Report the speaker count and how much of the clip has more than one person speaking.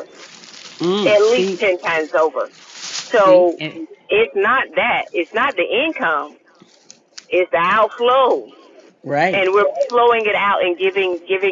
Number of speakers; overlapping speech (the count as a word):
two, about 11%